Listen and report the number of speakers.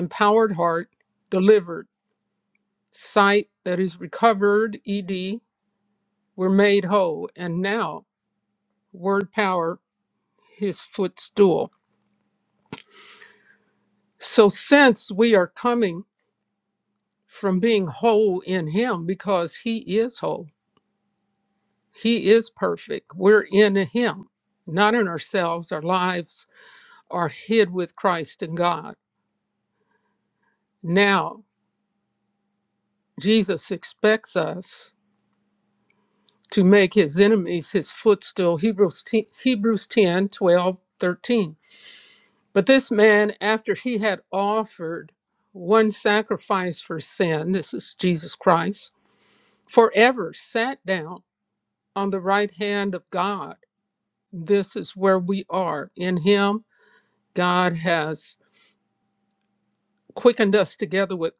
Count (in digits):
1